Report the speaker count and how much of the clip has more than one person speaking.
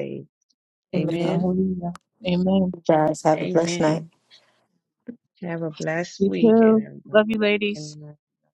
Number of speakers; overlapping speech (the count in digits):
3, about 23%